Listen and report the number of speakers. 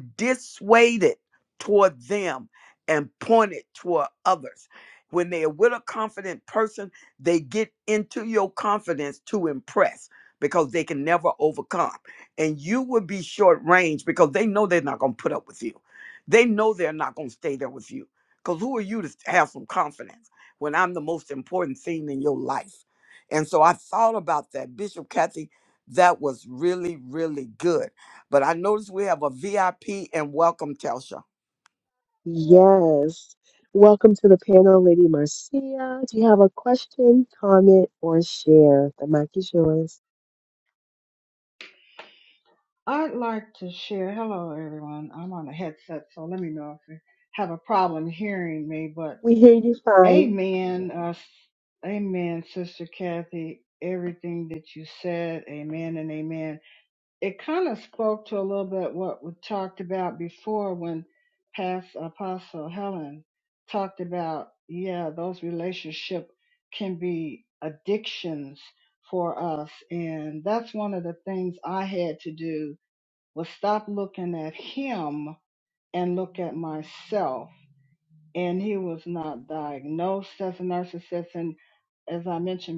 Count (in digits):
3